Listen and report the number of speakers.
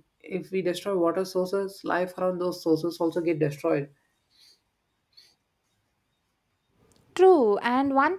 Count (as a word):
two